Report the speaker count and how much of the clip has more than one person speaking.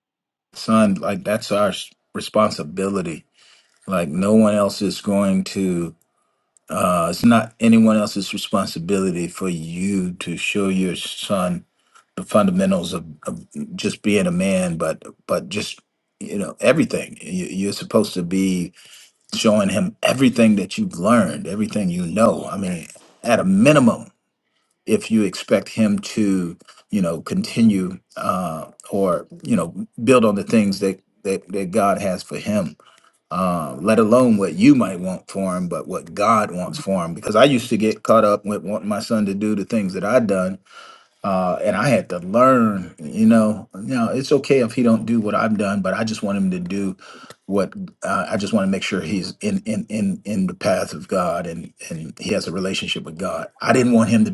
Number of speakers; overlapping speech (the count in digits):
1, no overlap